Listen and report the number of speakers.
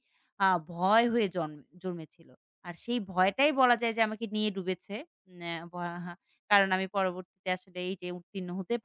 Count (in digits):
1